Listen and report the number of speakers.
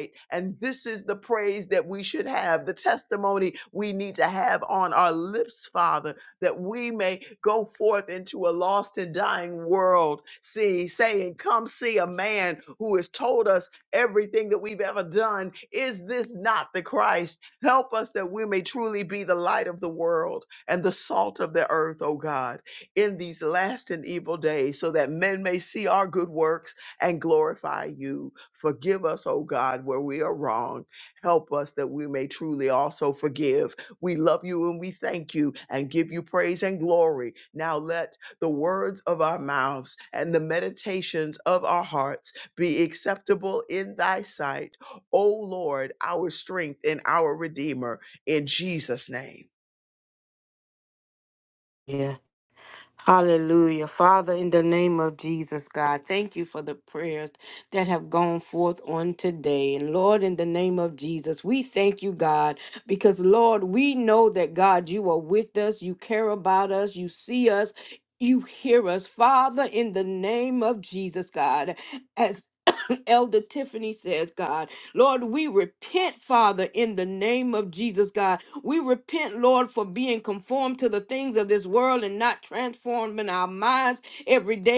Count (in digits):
2